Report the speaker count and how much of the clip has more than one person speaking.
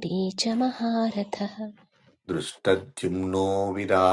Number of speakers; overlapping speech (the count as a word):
two, no overlap